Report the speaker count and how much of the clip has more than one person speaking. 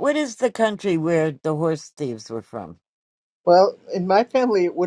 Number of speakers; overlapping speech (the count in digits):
2, no overlap